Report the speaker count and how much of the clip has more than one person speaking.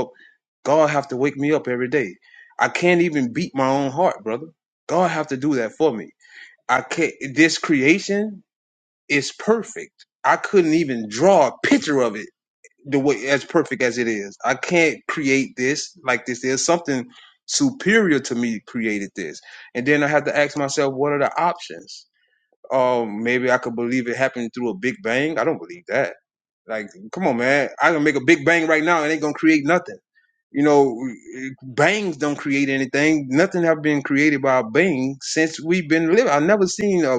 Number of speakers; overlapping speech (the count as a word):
one, no overlap